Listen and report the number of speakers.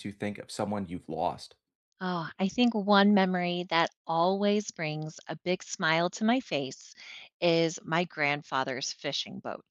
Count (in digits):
2